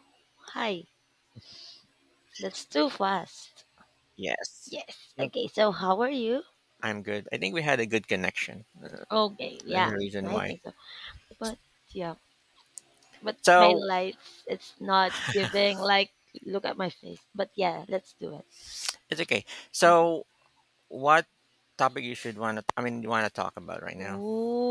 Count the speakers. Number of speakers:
two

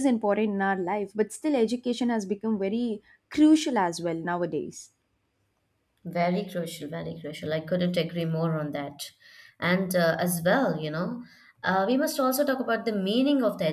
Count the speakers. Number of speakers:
two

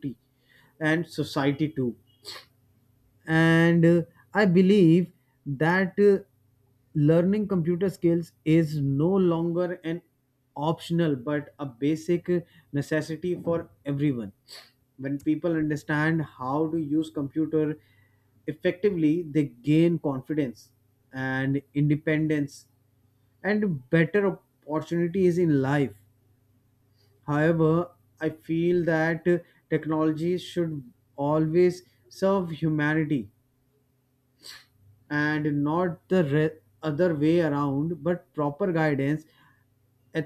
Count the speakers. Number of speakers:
one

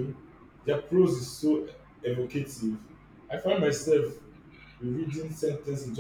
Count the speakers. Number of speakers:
one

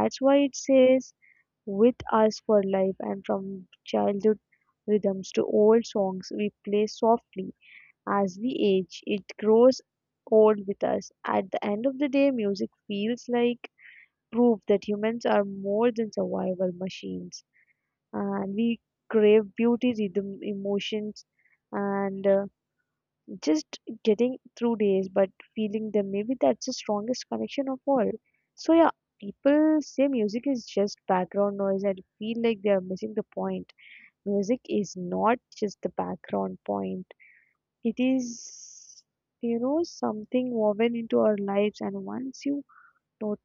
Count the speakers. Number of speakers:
one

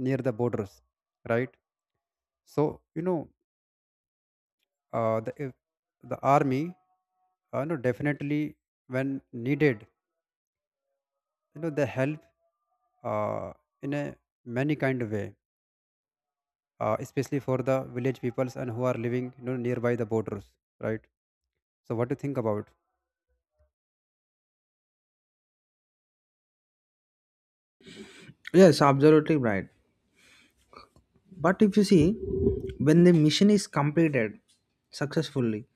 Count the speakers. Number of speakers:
two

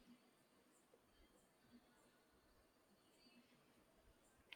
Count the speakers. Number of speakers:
zero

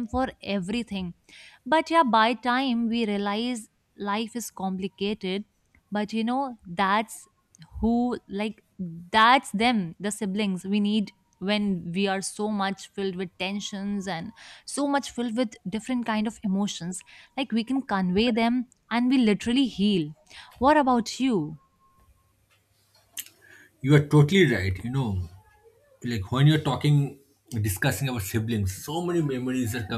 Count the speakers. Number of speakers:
two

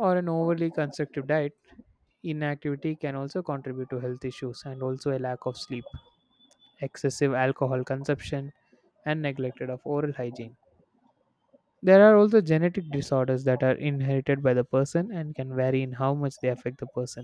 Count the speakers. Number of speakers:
one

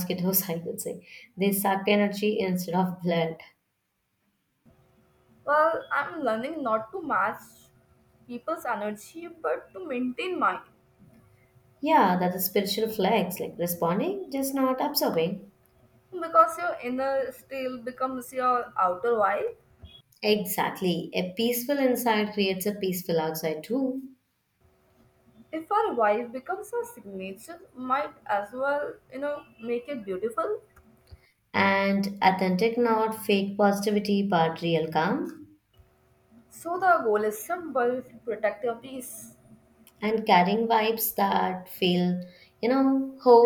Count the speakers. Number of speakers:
two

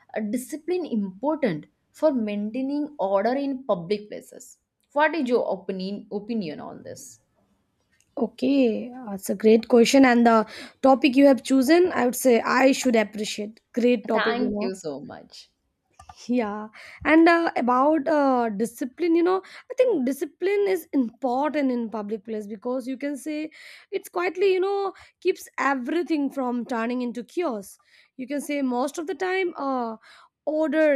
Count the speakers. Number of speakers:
two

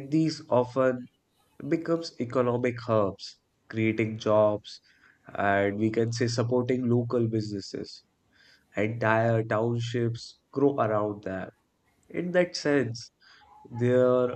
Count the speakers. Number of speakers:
one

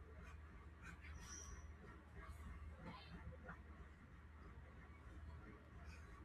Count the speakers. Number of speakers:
zero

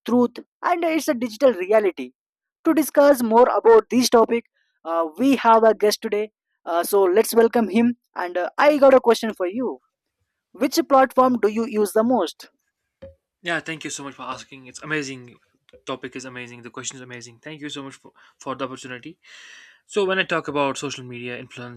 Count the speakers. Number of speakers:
two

